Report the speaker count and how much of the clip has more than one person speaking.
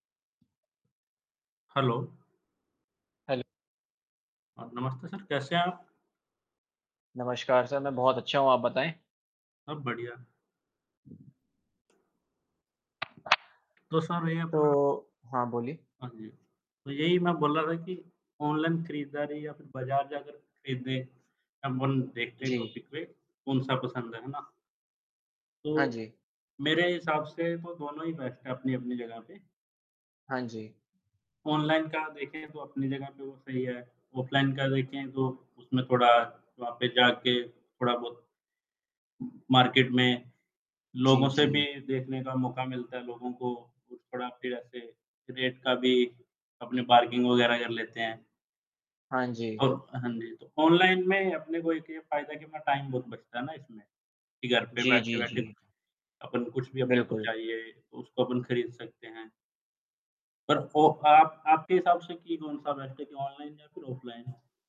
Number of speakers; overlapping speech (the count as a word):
two, about 4%